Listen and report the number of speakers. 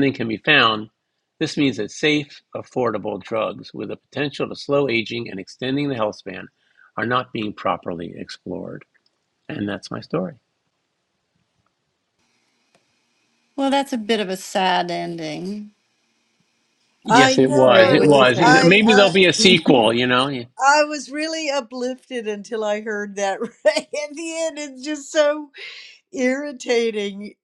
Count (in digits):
3